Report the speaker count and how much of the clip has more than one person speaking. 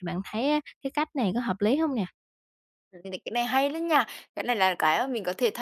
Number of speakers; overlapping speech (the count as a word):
two, no overlap